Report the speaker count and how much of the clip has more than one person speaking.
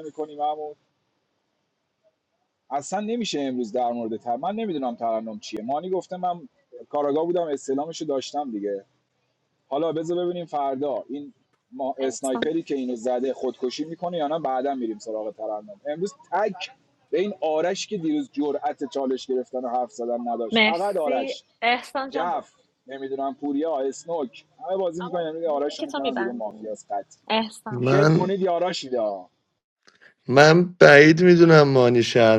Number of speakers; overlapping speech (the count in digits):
3, about 11%